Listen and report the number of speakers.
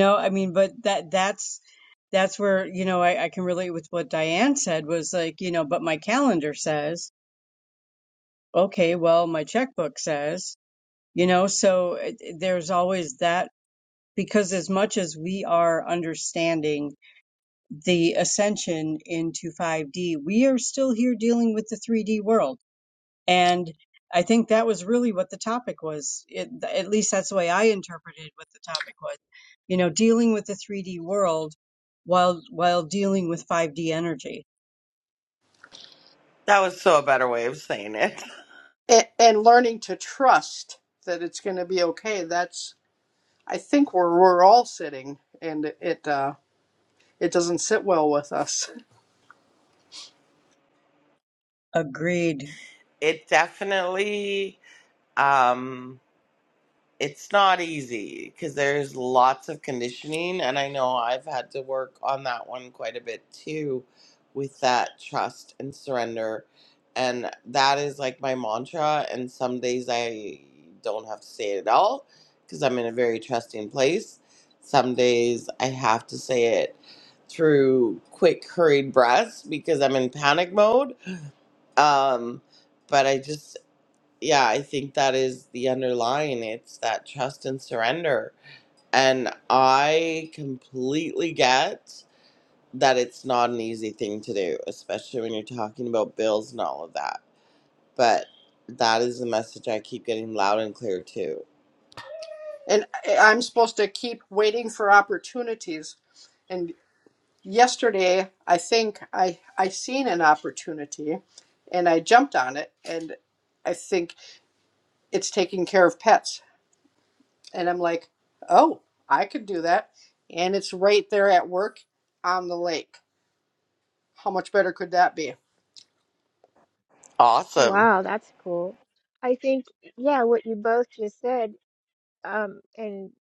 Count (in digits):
4